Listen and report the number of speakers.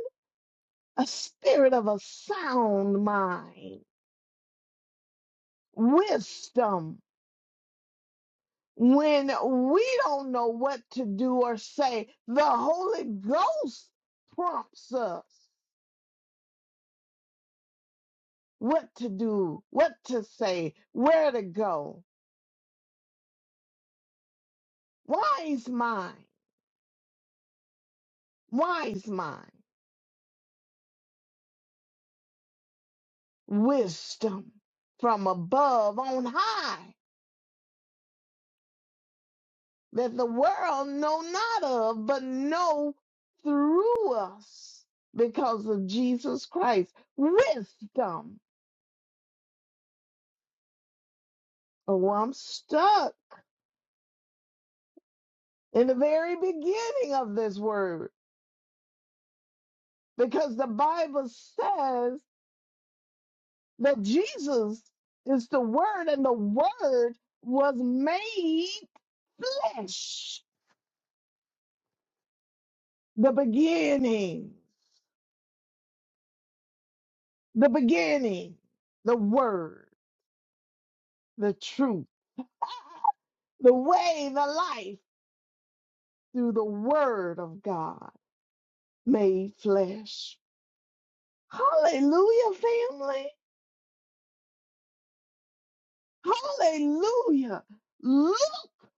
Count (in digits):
1